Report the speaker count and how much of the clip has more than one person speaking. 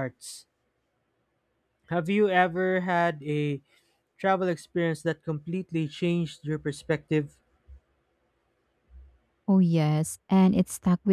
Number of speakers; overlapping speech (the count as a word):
two, no overlap